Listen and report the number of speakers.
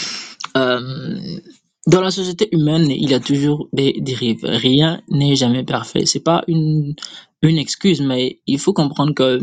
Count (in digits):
1